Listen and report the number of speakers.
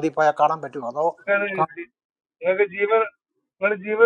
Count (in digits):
2